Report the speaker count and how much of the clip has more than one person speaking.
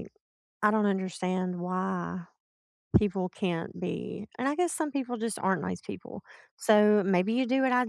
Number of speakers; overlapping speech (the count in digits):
1, no overlap